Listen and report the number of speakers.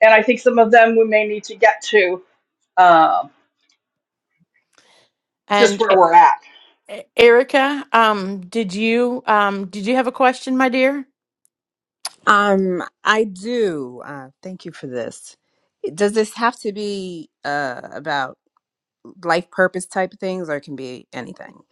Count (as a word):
three